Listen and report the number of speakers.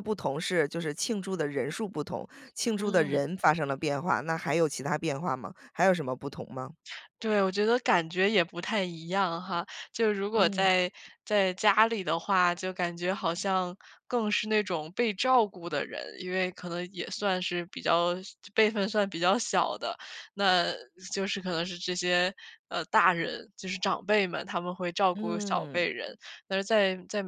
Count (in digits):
2